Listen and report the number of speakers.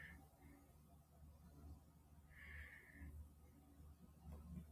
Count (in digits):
0